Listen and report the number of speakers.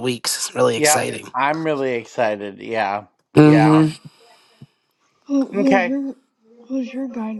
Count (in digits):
3